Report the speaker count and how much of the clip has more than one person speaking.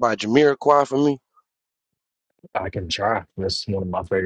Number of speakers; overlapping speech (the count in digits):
2, no overlap